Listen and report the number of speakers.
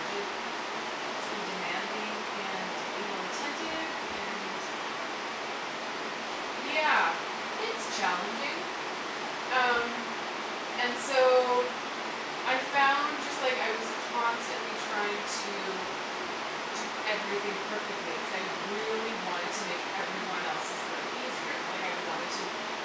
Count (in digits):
1